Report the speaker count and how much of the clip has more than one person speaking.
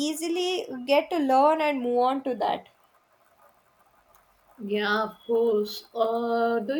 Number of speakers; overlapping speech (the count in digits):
2, no overlap